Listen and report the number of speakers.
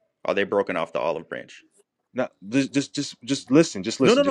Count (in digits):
2